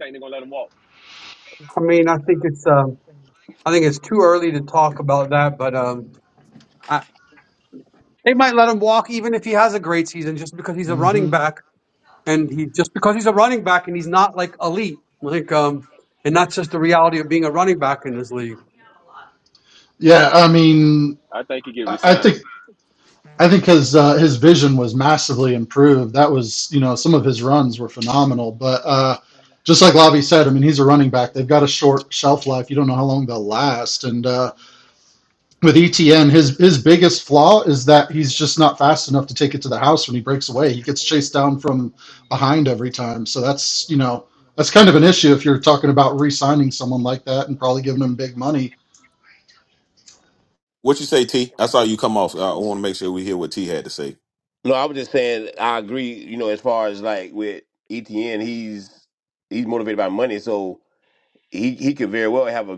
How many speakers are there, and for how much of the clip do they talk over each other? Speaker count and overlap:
5, about 1%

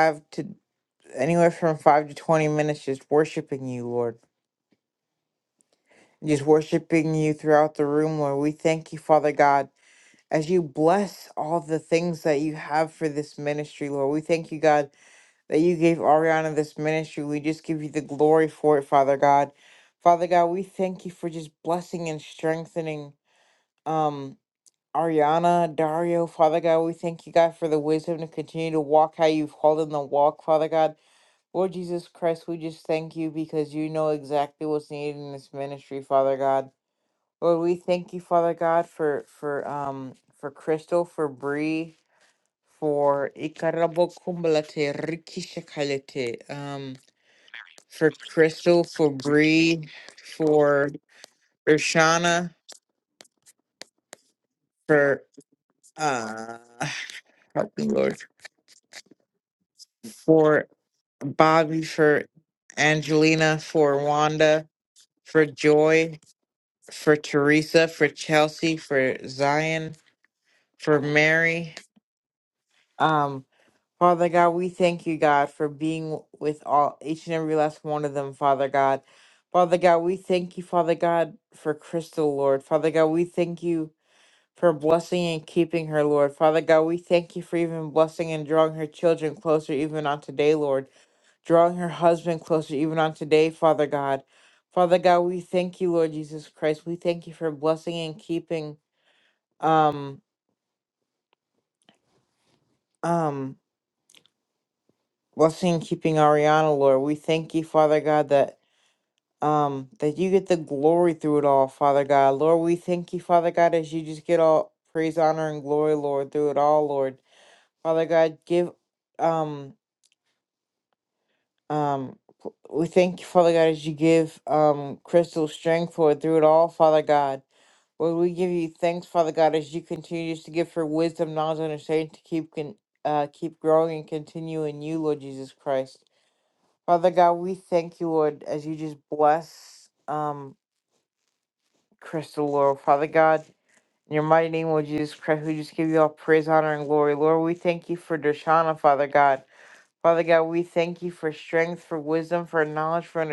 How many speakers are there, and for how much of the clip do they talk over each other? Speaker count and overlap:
1, no overlap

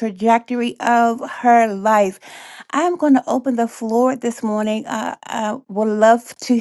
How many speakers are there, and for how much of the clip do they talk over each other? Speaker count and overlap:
1, no overlap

